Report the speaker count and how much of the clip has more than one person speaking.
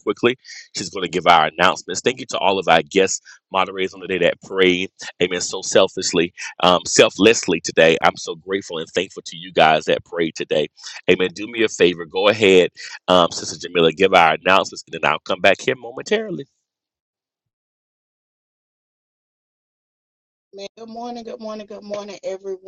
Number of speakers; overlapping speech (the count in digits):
2, no overlap